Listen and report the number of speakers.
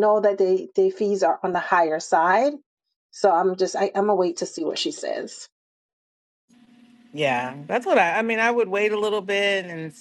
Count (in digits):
2